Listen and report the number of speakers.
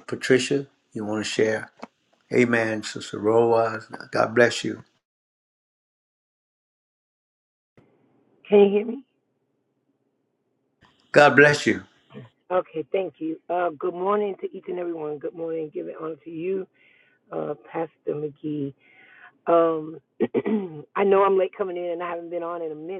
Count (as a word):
two